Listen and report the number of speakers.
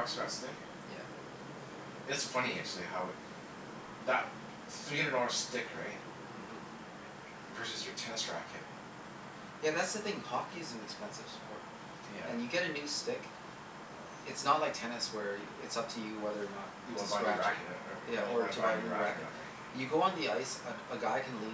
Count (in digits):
2